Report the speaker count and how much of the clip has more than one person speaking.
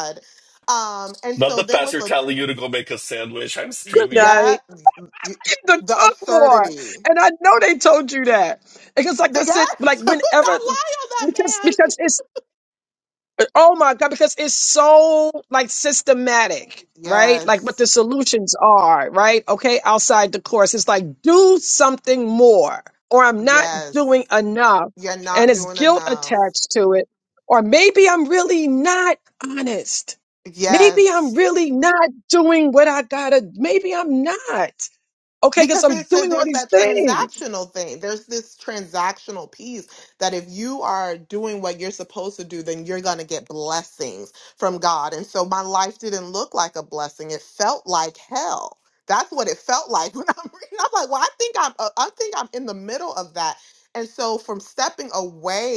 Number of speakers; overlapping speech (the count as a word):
three, about 15%